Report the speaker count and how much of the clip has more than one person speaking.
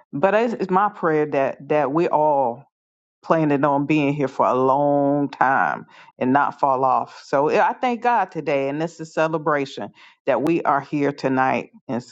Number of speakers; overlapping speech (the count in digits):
1, no overlap